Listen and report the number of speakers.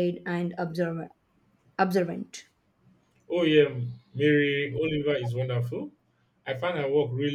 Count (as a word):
two